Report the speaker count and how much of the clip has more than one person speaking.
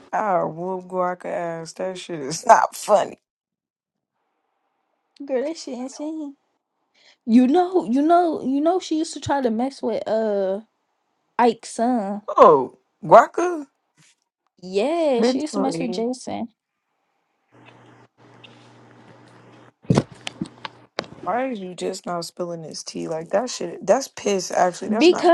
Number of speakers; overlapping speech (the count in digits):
2, about 5%